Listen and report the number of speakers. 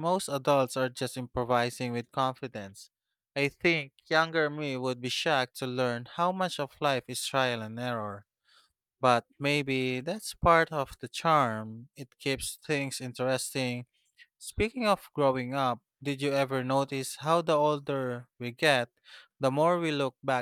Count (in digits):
1